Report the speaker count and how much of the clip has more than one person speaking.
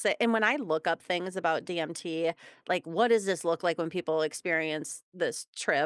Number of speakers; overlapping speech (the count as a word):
one, no overlap